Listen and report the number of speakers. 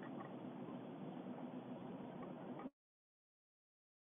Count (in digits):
0